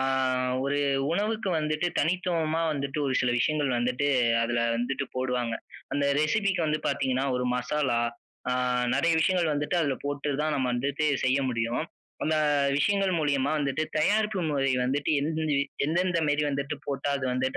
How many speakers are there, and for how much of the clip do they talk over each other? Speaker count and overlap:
one, no overlap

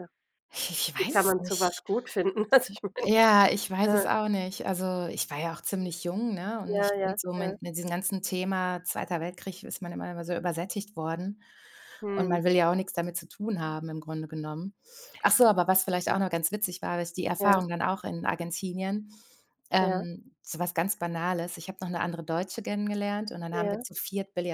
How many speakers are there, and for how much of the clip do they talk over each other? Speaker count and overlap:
two, about 13%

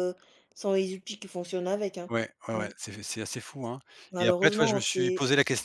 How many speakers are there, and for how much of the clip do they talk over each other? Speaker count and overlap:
two, about 21%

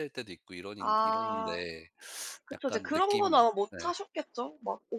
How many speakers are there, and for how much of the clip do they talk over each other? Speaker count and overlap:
two, about 45%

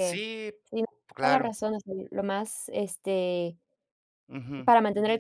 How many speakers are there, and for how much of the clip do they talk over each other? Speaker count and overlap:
two, about 8%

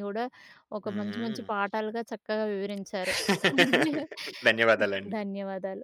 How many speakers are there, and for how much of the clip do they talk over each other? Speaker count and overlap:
two, about 11%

